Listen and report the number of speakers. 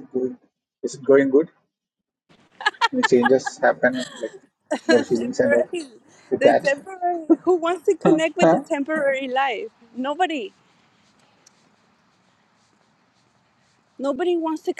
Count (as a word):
two